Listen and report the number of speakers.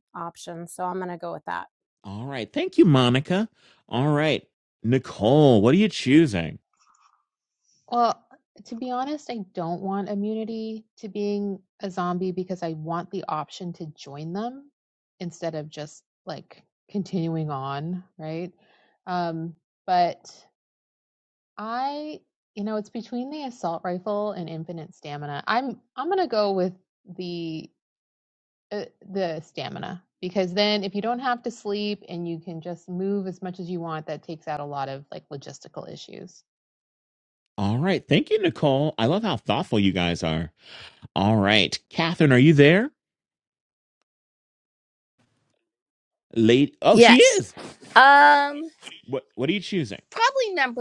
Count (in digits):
4